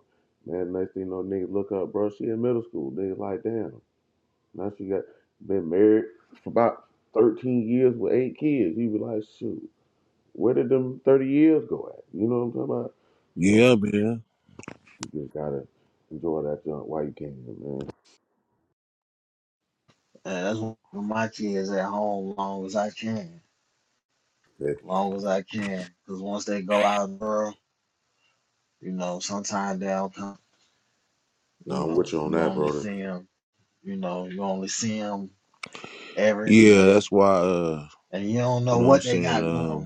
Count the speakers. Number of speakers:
3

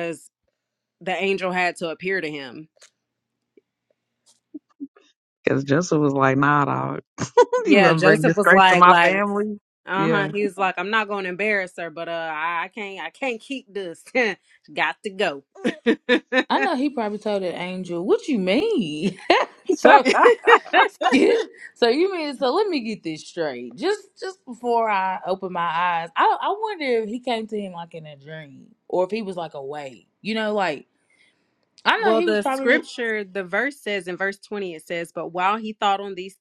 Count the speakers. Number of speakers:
3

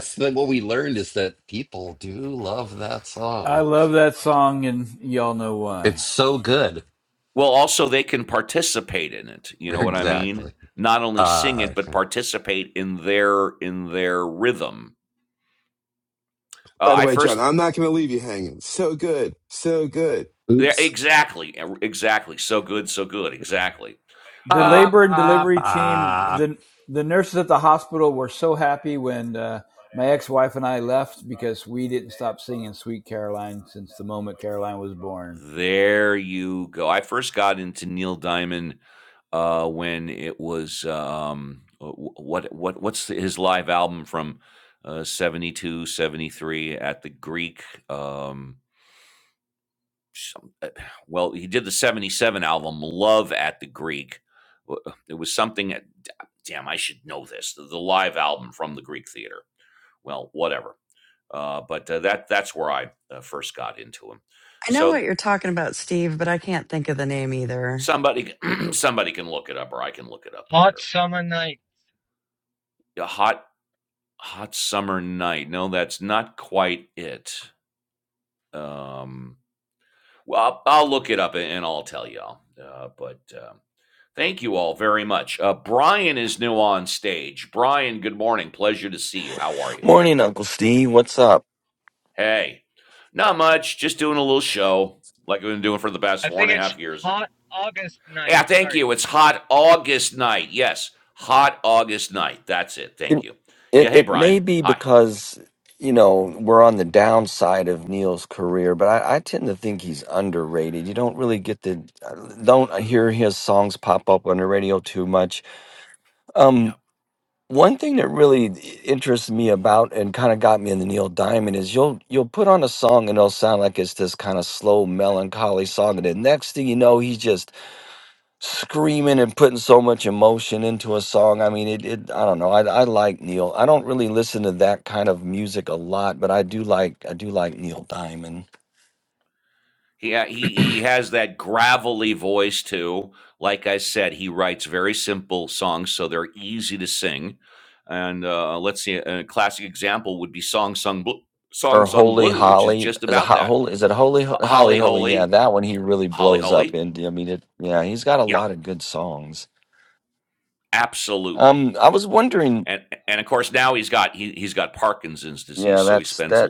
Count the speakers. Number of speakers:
7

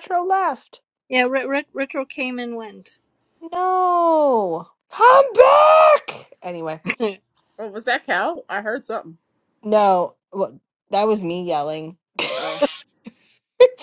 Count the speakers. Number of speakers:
3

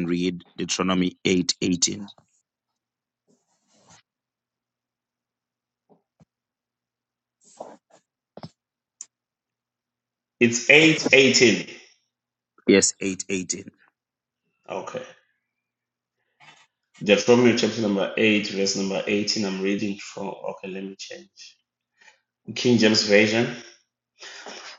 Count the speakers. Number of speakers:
2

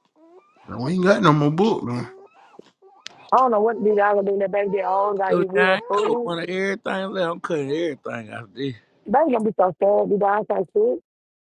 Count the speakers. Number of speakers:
3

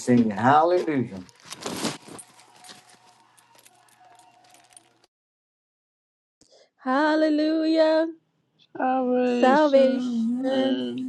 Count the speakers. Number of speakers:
3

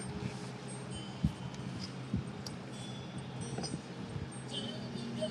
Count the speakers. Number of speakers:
0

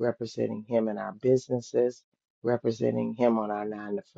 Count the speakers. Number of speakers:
1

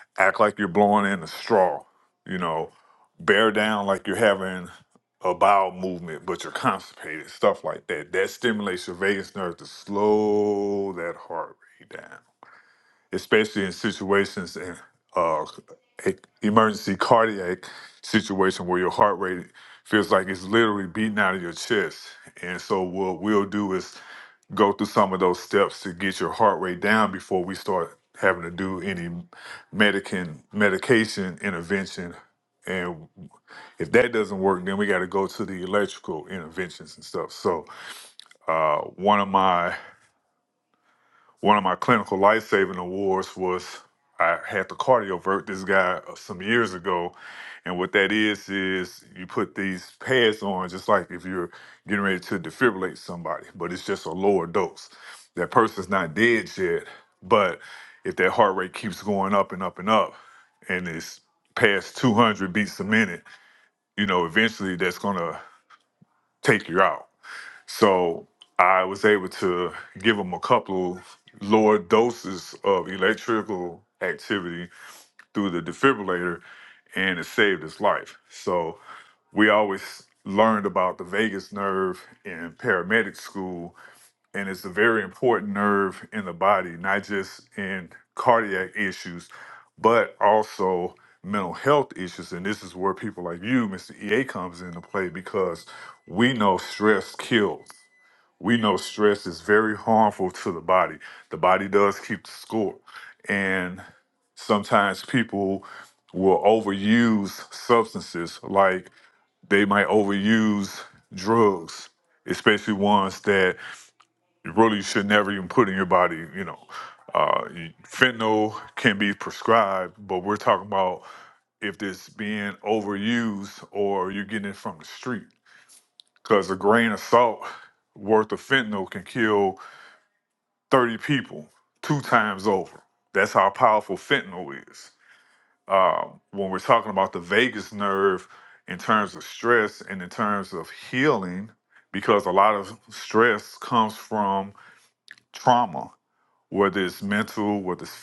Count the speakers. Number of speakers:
1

